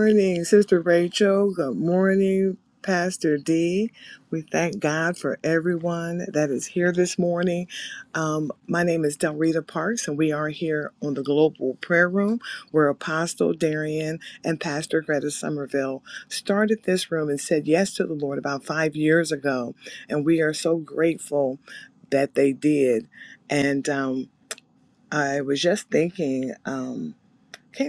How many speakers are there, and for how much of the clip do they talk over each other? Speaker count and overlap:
1, no overlap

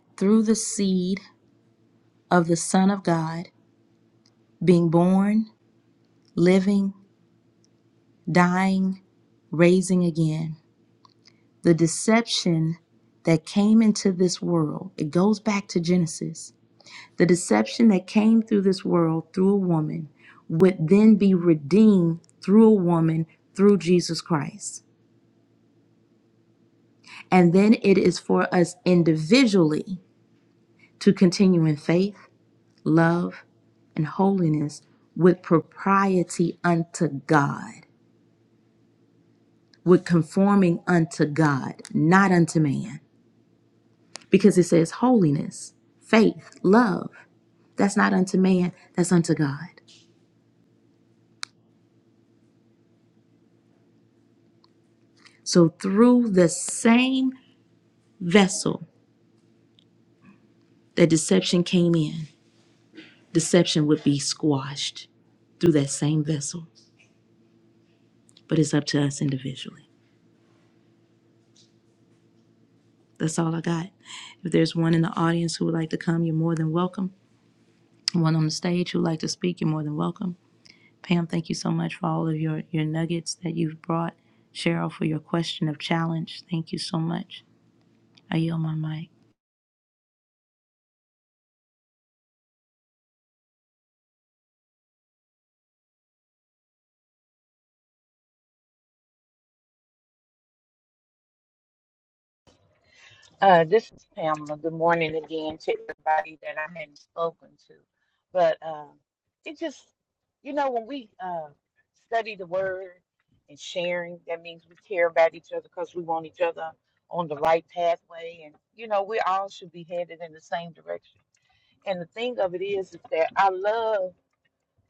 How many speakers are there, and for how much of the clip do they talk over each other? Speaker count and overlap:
2, no overlap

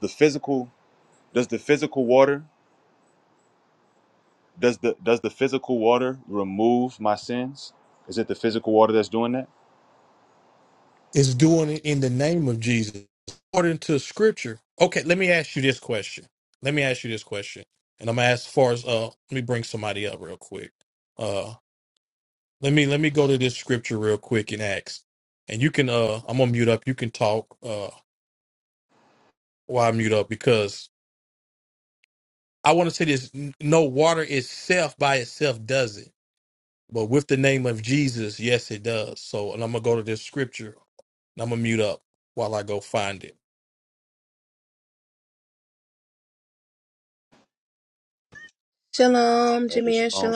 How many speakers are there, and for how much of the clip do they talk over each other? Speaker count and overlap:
3, about 1%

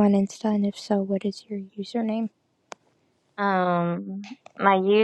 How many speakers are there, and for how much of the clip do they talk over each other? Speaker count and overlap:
2, no overlap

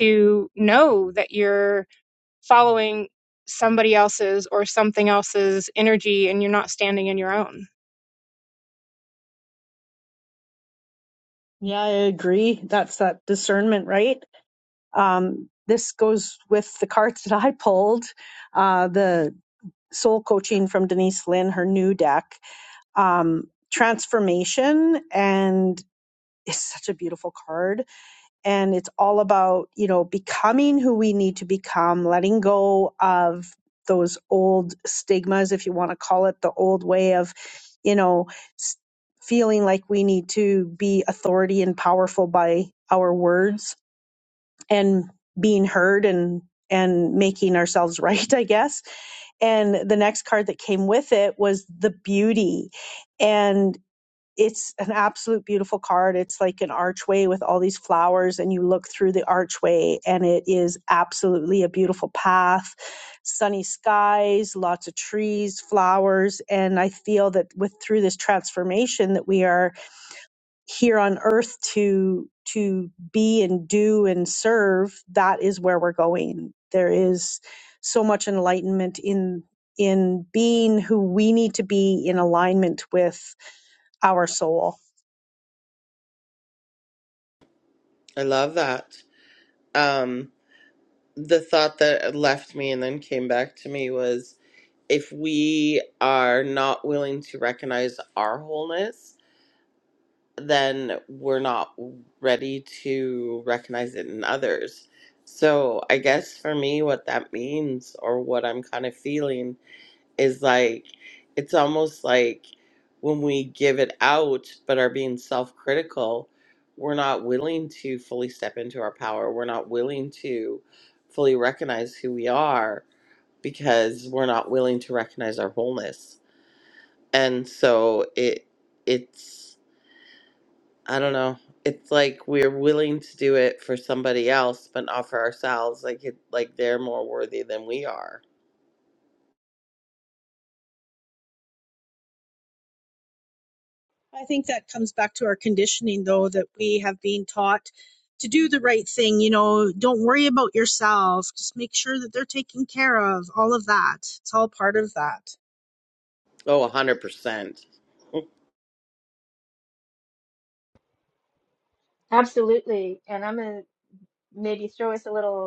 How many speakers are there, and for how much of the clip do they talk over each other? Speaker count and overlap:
4, no overlap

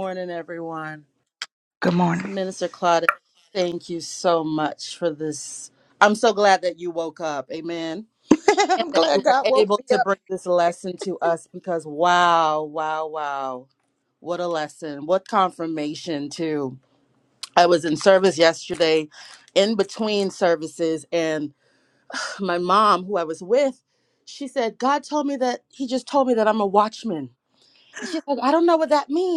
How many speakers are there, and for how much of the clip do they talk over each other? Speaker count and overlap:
2, about 5%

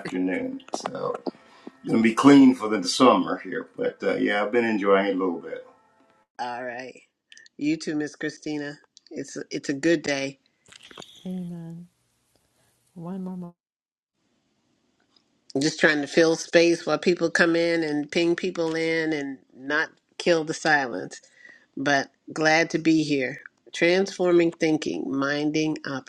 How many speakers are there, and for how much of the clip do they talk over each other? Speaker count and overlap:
3, no overlap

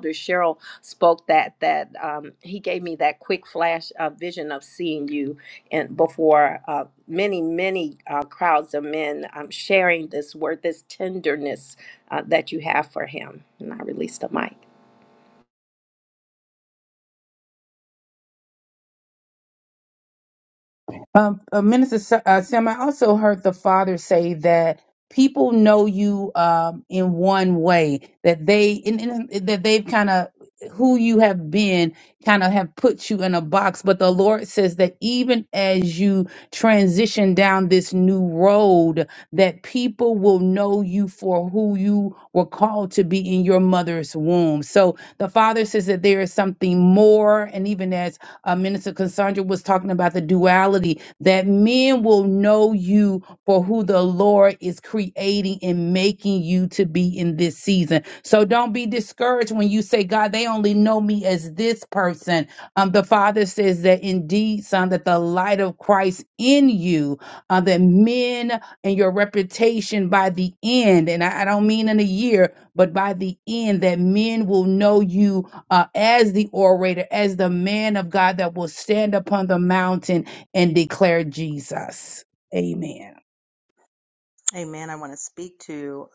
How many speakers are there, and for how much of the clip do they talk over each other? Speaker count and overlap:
3, no overlap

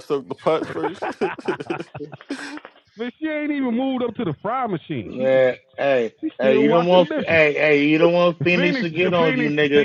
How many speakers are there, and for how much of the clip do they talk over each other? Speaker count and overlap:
3, about 29%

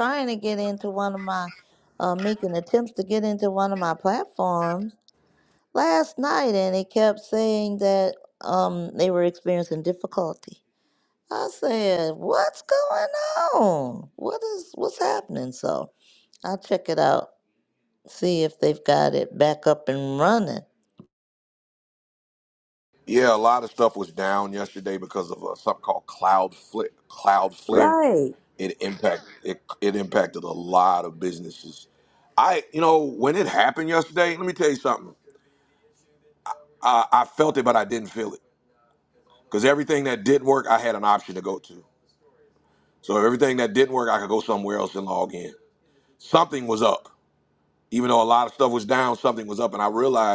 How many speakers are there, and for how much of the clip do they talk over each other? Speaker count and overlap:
2, under 1%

